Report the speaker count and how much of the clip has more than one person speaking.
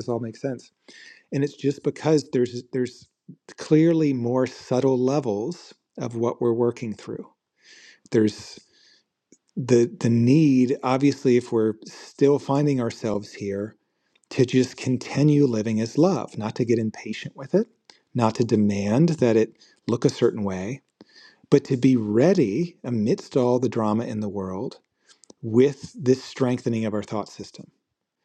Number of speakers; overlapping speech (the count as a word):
one, no overlap